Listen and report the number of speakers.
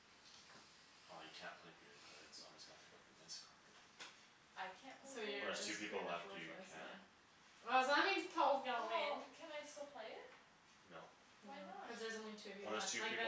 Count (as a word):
three